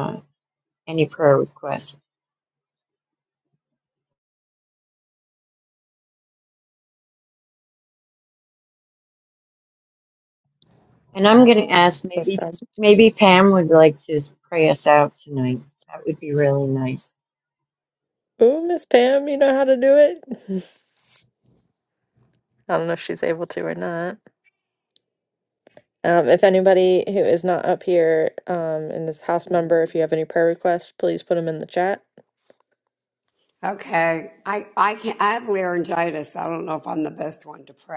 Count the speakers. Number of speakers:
3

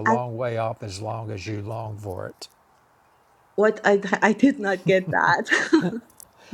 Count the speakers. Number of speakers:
2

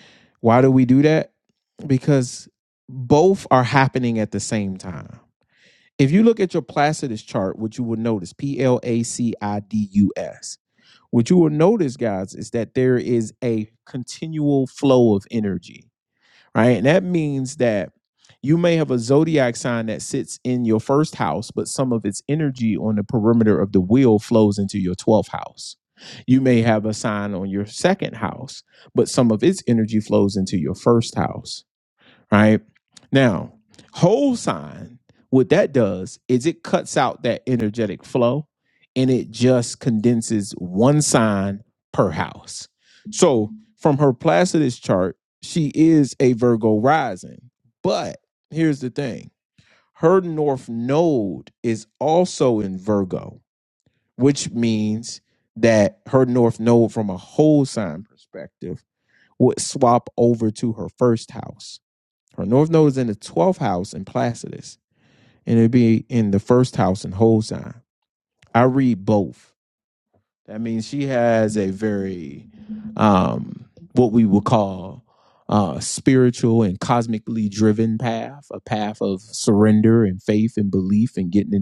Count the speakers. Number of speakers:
1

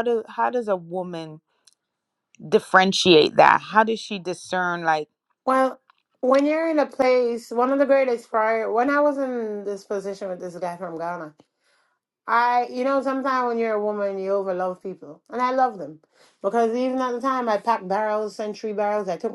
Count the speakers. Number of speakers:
2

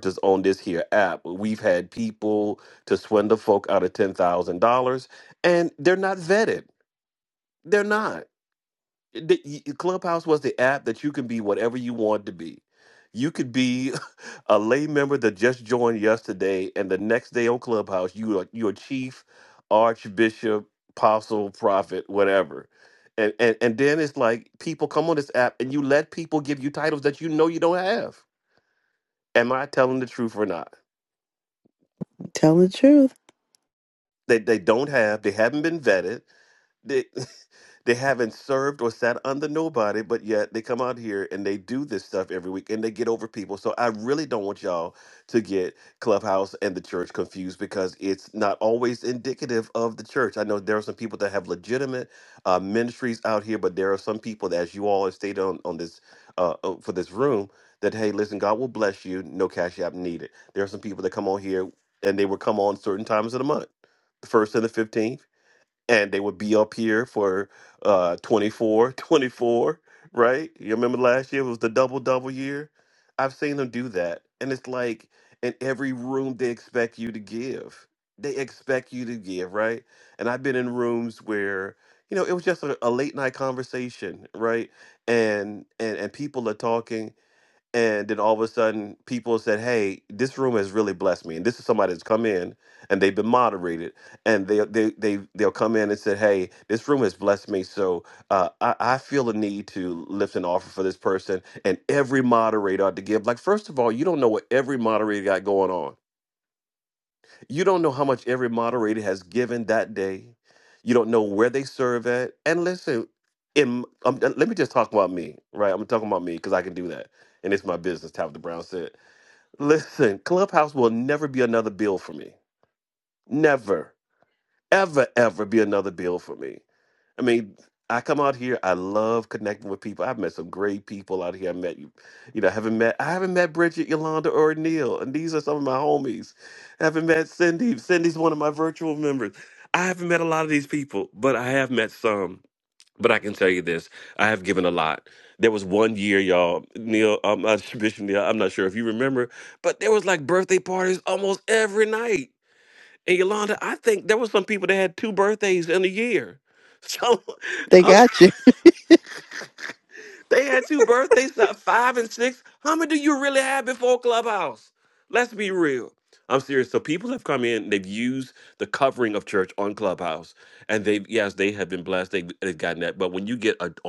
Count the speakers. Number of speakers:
2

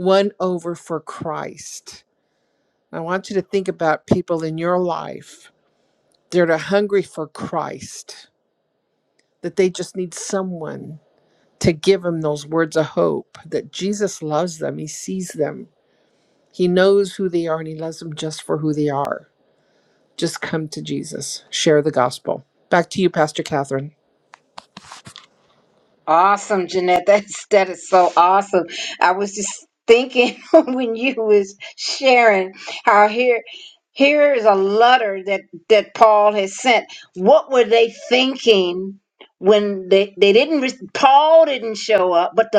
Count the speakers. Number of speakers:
2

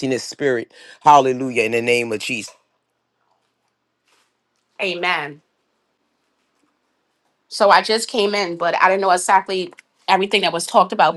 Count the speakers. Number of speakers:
2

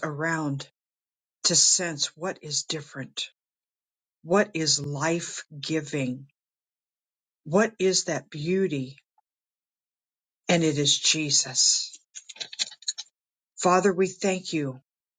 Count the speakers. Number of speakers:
1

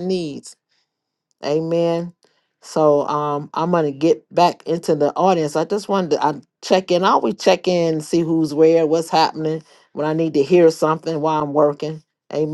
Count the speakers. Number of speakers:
1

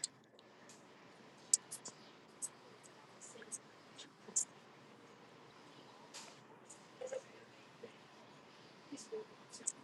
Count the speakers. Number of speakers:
0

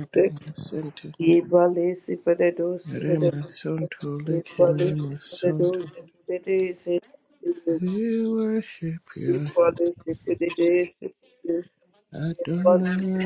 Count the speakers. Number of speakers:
2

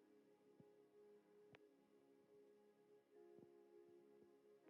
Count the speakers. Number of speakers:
0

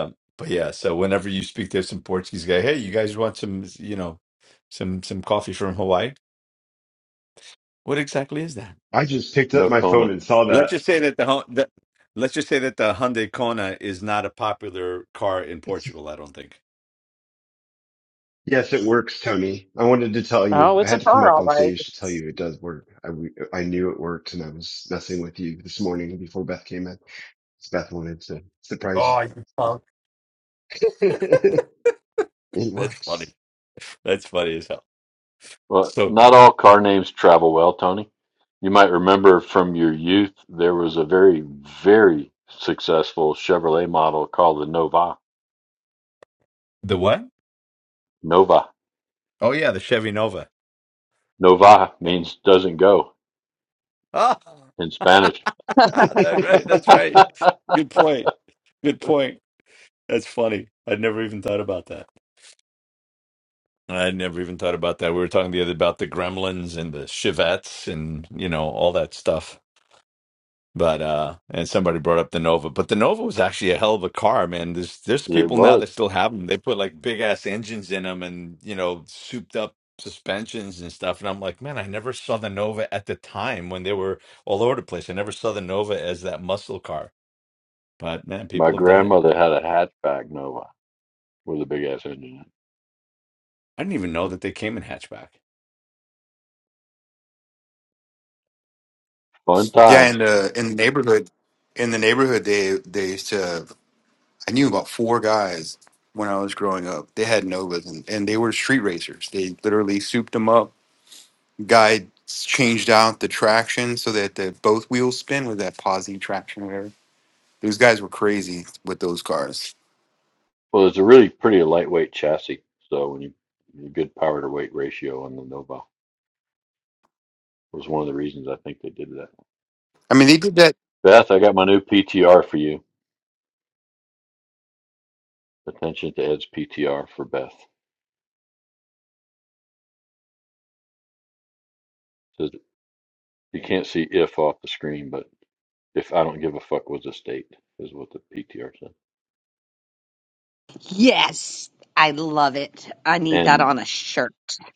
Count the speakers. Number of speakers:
5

